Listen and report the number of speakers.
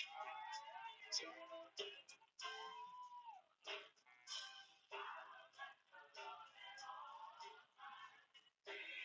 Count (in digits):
0